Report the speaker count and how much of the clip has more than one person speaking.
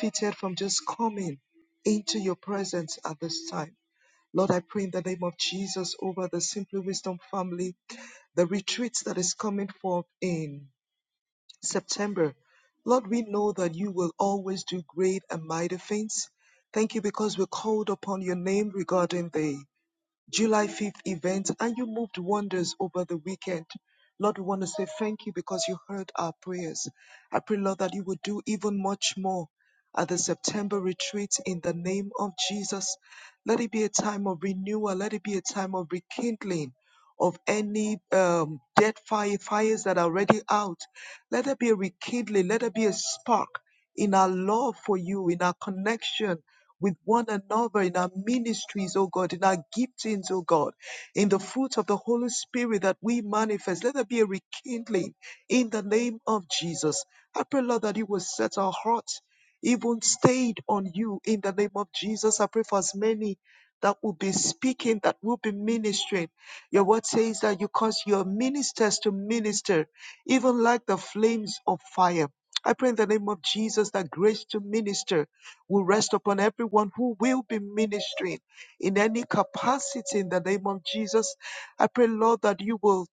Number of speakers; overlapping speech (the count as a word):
one, no overlap